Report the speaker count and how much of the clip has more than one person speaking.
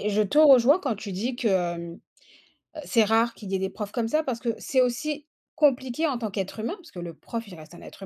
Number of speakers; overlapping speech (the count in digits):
1, no overlap